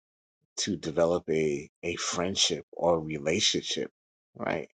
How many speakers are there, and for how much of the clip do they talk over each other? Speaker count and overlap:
one, no overlap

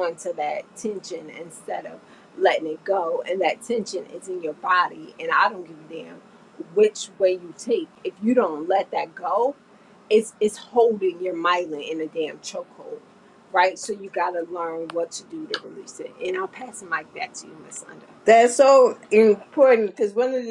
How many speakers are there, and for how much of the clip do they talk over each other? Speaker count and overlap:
two, no overlap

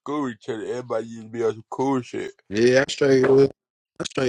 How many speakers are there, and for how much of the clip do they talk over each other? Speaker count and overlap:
two, no overlap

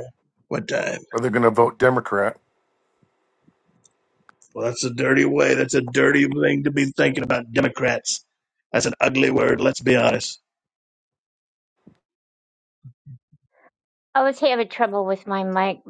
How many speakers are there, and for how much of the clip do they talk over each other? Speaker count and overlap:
three, no overlap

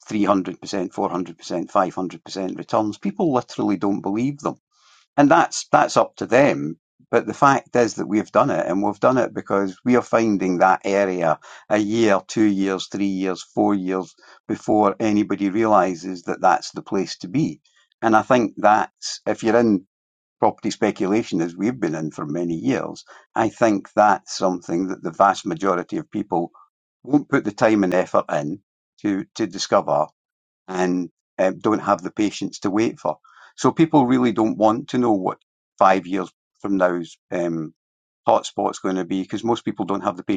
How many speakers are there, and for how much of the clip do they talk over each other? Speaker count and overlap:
one, no overlap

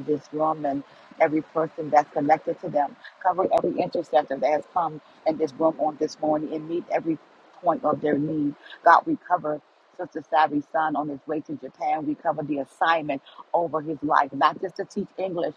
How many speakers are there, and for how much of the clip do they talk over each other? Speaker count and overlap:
one, no overlap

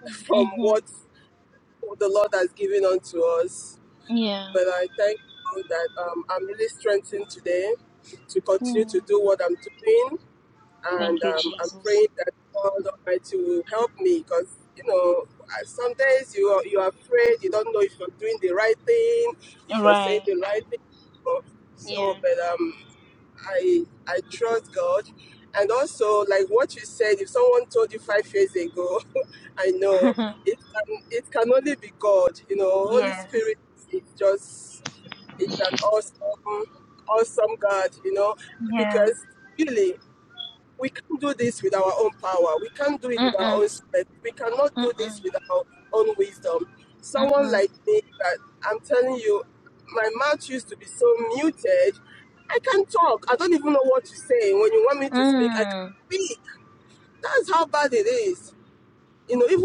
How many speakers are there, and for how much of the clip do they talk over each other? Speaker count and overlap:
two, about 10%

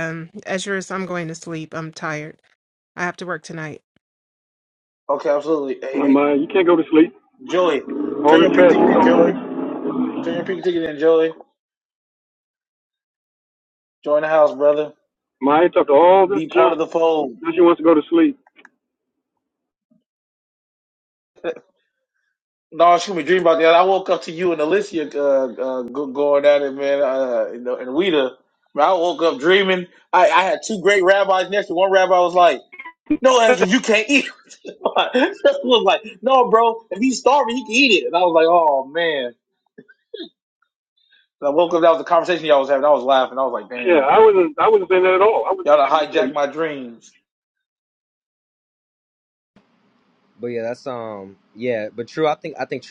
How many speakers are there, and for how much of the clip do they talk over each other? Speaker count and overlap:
four, about 5%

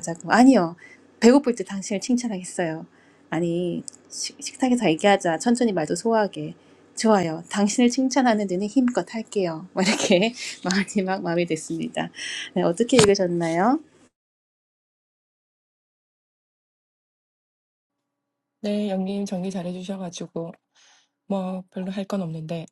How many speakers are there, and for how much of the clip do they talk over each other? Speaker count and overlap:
two, no overlap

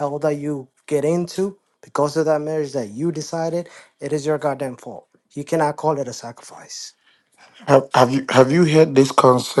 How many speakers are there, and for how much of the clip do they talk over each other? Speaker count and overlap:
two, no overlap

